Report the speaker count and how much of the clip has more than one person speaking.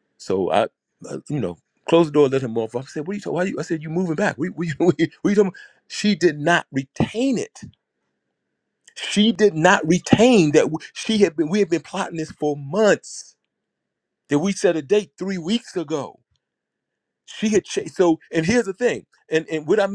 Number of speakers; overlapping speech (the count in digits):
1, no overlap